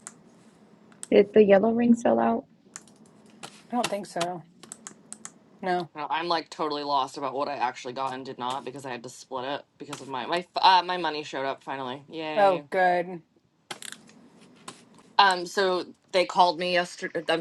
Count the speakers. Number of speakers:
three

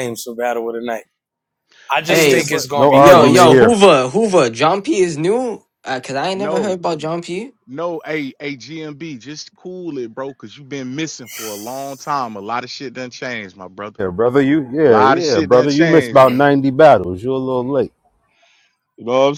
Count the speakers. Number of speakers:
four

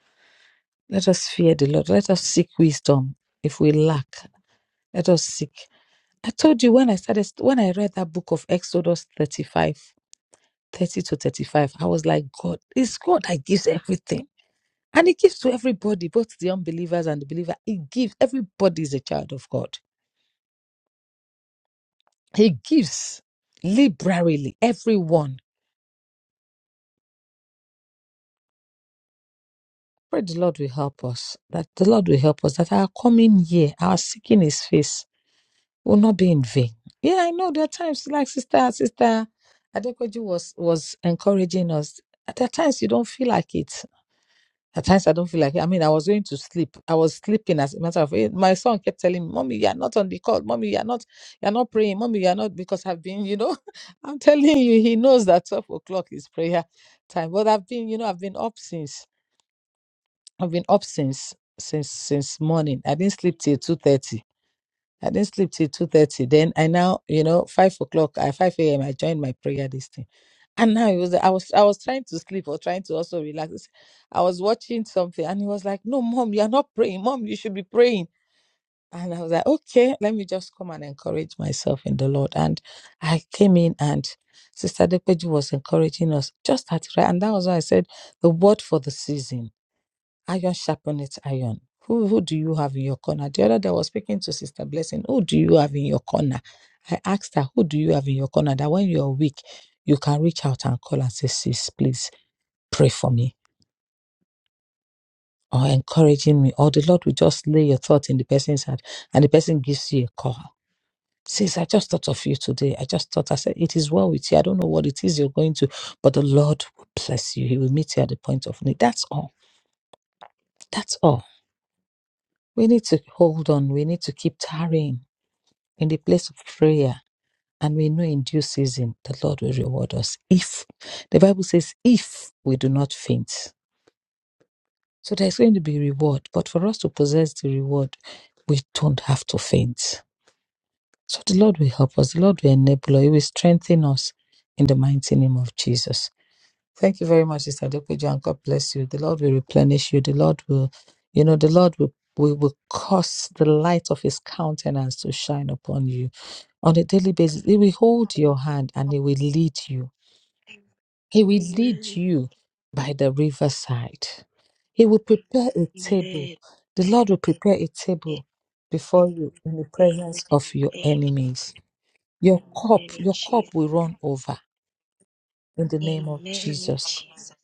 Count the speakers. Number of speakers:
one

